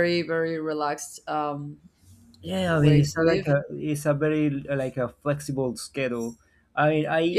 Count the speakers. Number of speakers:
2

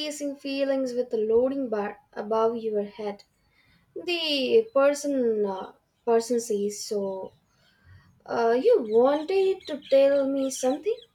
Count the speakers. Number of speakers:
1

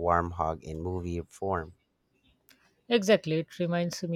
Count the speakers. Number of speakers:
2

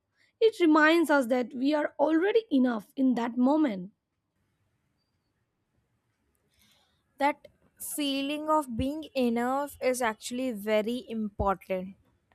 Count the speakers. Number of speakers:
2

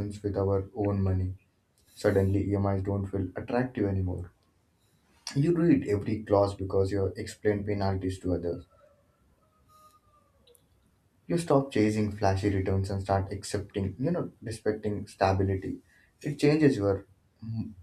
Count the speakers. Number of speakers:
1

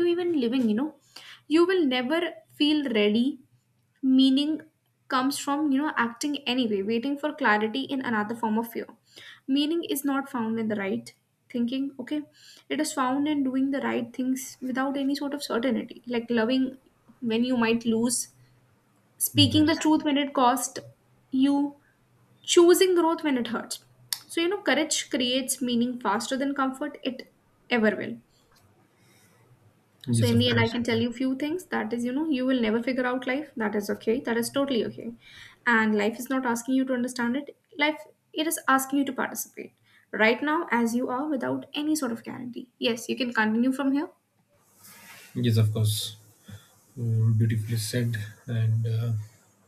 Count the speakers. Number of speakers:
2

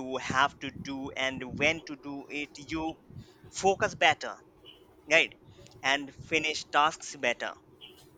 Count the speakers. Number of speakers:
1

